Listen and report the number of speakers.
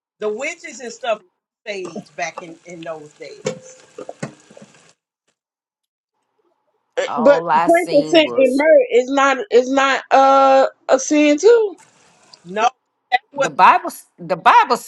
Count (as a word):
three